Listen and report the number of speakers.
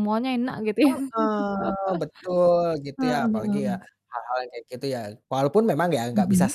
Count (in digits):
2